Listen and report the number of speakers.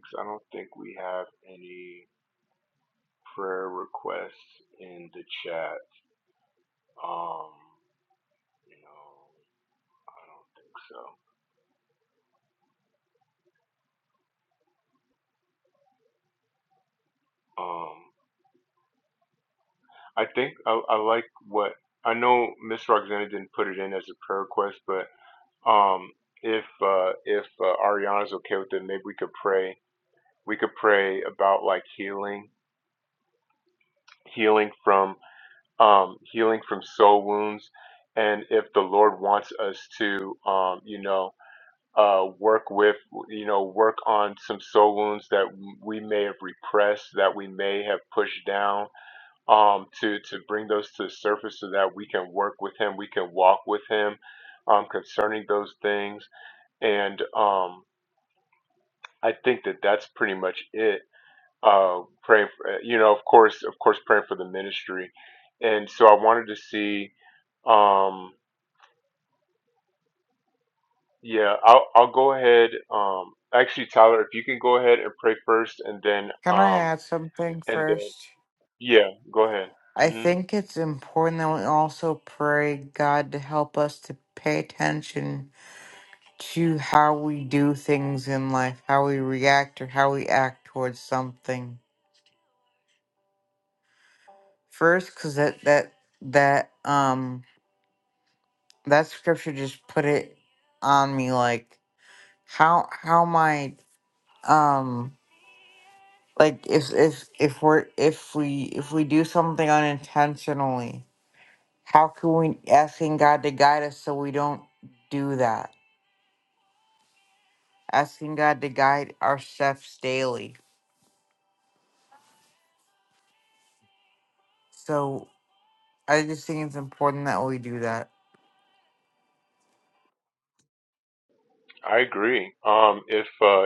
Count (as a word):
two